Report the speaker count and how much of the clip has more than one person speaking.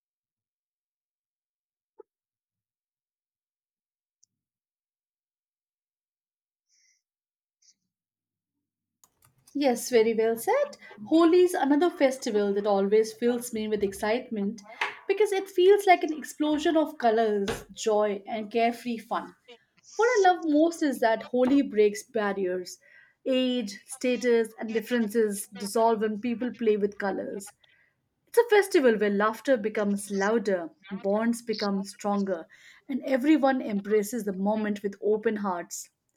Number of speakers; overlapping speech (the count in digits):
1, no overlap